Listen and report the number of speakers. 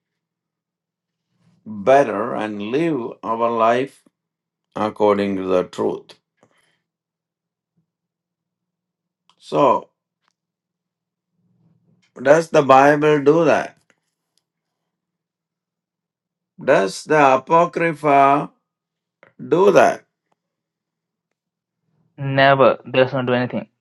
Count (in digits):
2